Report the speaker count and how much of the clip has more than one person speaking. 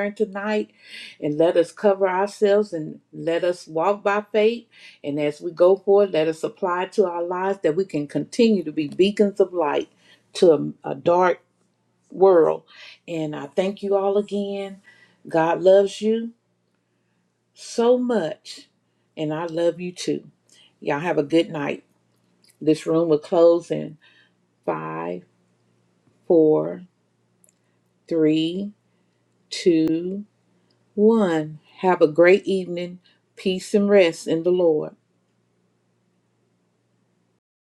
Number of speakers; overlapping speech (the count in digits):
1, no overlap